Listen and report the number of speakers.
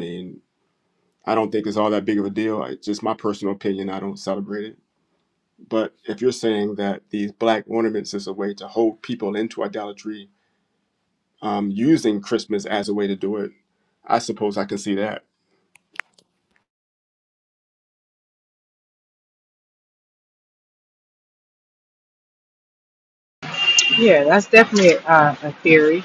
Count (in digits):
2